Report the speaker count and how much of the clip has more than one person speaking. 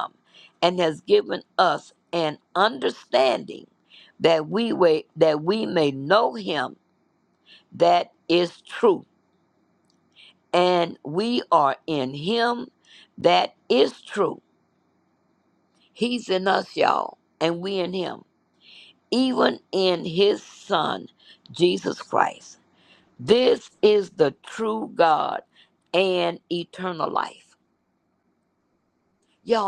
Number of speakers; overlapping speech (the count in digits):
1, no overlap